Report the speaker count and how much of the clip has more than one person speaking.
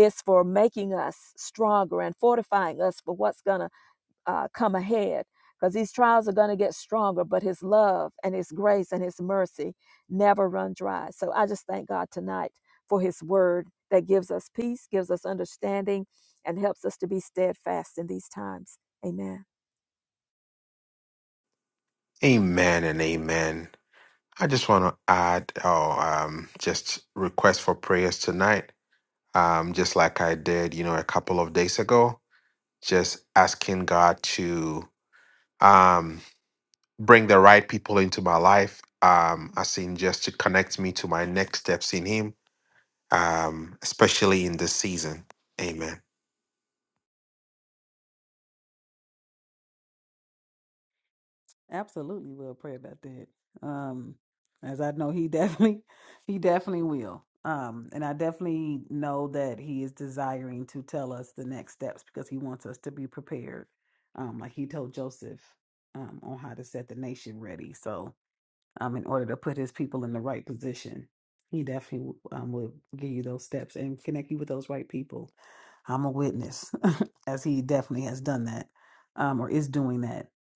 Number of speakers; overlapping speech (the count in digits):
3, no overlap